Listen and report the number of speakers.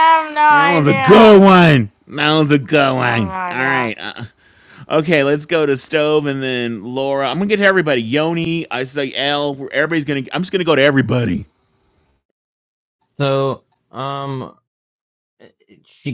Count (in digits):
3